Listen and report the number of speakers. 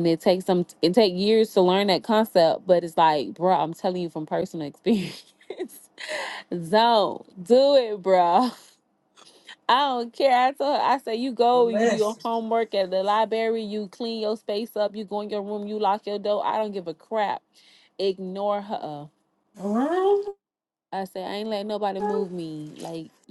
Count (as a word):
two